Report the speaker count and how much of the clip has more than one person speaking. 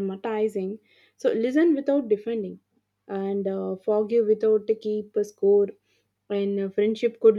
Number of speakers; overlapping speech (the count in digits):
1, no overlap